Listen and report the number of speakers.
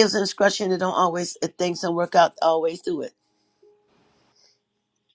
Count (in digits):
1